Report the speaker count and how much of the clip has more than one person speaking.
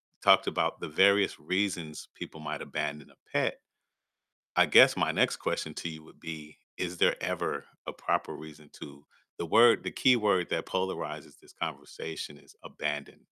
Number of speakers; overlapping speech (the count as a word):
one, no overlap